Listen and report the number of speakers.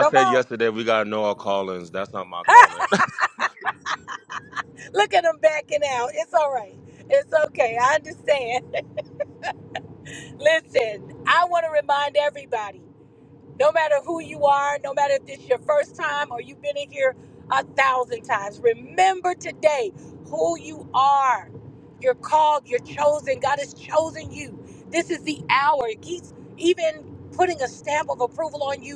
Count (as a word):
two